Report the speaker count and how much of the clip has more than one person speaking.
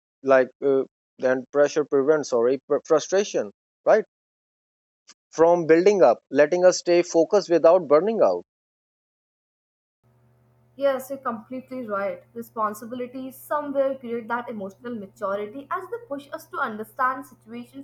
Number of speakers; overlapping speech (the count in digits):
2, no overlap